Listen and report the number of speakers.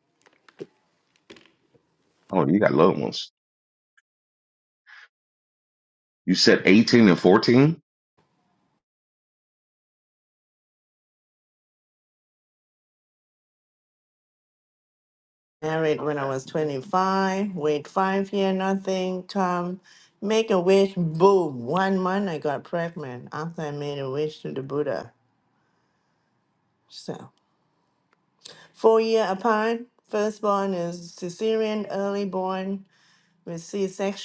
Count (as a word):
two